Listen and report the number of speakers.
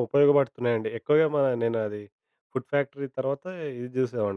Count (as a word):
one